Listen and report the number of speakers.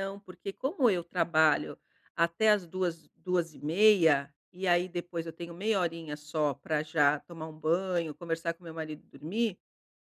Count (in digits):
1